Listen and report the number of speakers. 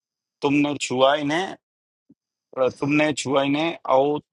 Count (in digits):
1